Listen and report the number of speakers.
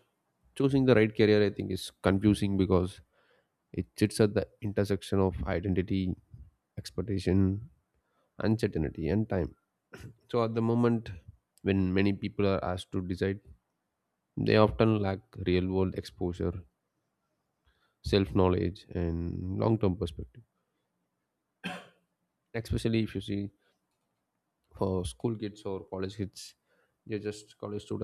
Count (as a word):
one